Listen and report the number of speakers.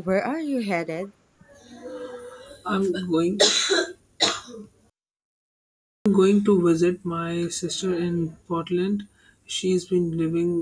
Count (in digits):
2